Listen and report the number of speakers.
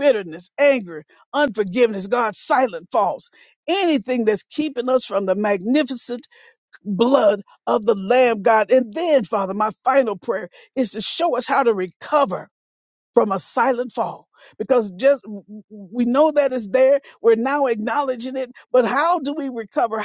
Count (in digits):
1